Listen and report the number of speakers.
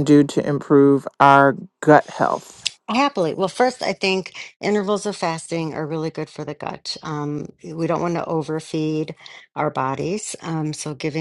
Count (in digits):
2